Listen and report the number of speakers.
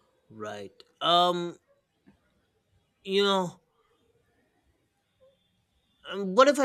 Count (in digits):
1